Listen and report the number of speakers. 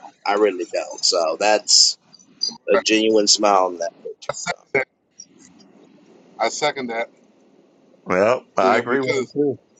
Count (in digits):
3